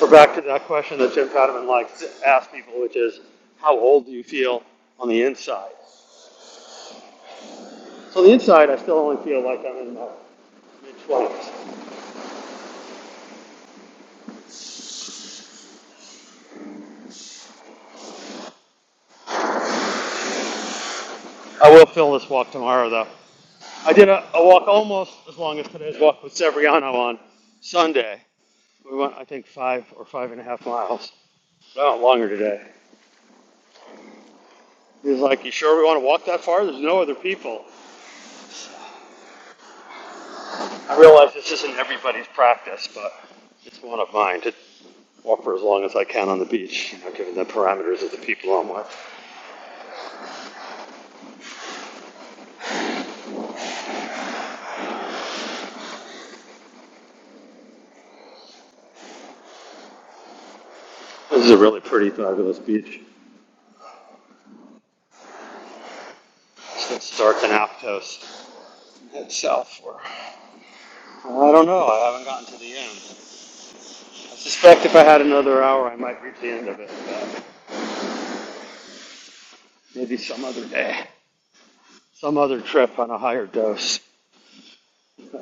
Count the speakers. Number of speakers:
1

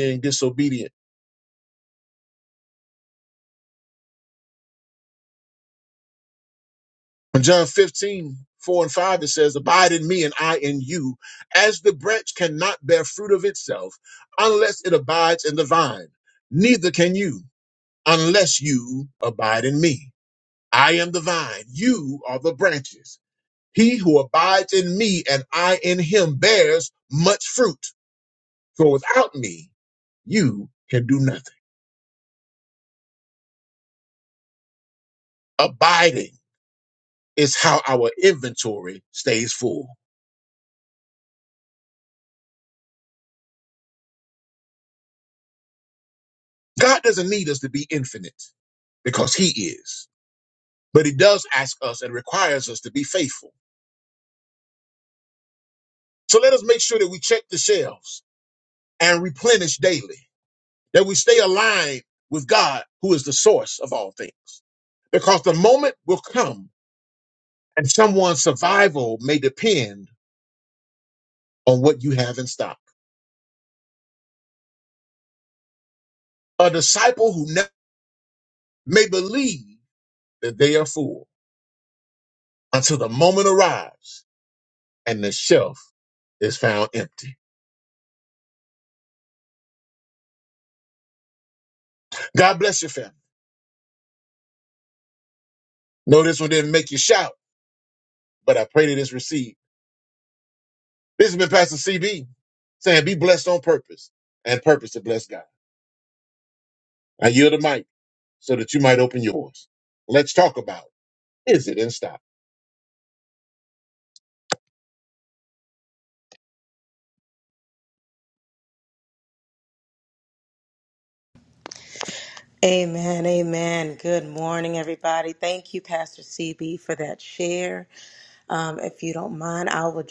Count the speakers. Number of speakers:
2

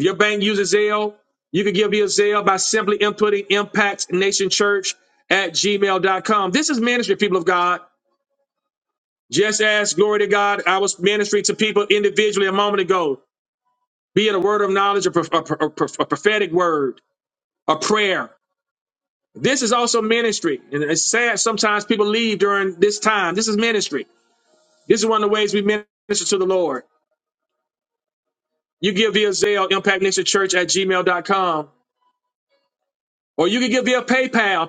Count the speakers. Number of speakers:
1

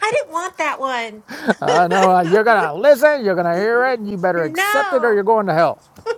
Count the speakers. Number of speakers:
2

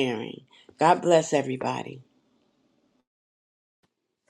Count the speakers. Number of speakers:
1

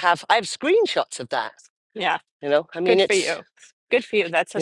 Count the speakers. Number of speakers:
2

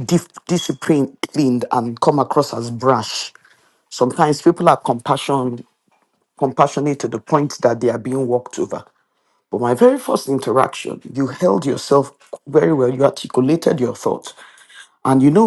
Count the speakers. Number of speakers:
1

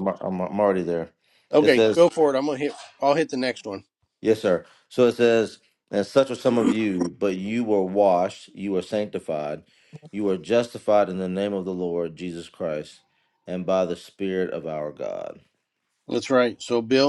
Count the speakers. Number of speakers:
2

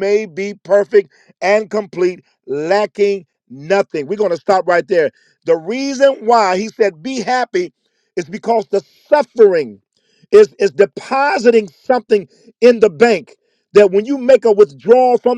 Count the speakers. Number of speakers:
1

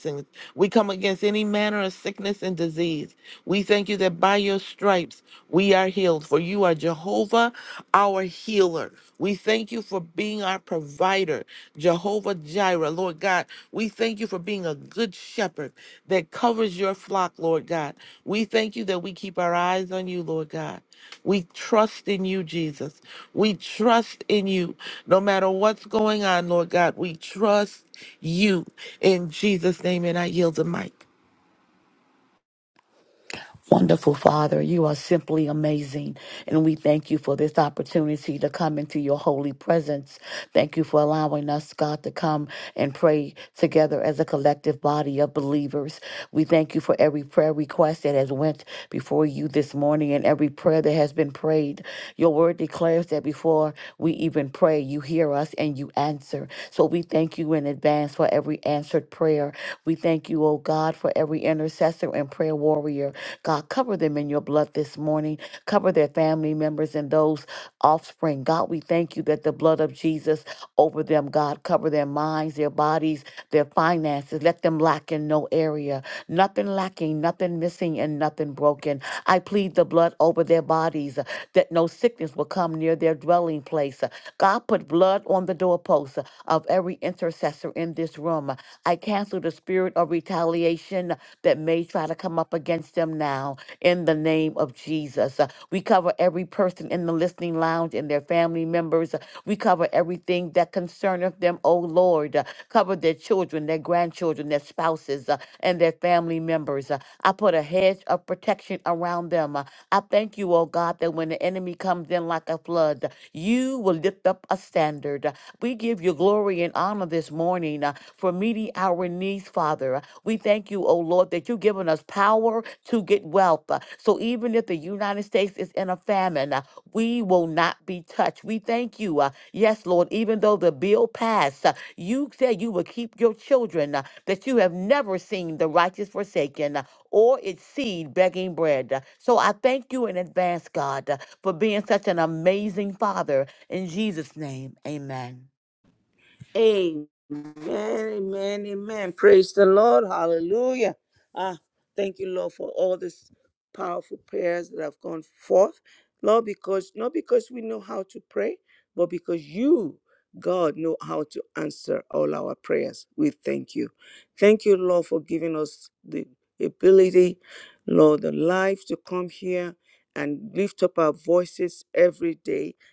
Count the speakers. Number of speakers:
3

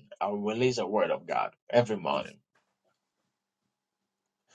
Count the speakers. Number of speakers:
1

